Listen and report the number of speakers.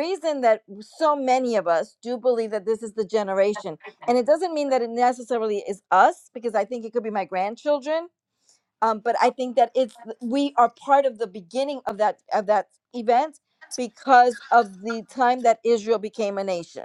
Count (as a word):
one